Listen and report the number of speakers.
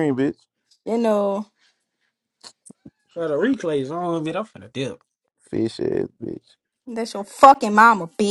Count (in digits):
3